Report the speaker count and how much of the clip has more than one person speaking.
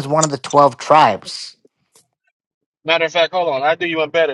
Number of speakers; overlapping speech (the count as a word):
two, no overlap